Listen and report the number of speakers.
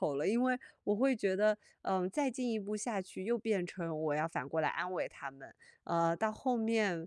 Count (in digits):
1